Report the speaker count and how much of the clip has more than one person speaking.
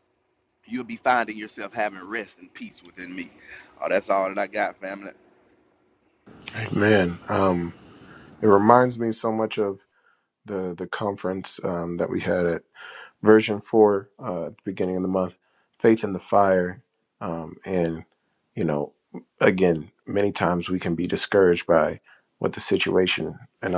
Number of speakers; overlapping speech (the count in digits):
2, no overlap